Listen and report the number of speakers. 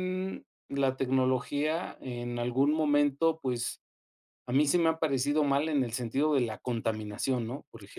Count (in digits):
1